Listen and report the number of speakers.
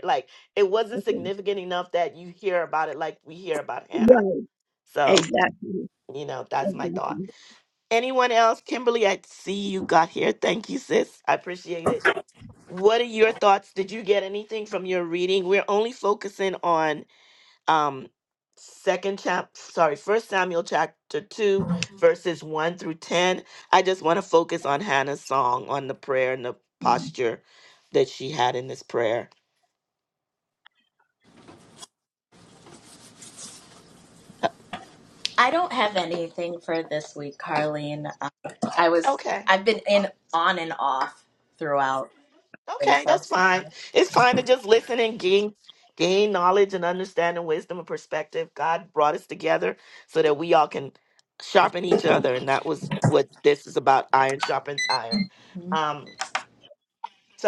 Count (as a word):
three